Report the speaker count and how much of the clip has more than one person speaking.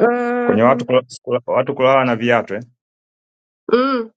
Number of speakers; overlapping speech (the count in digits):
2, about 10%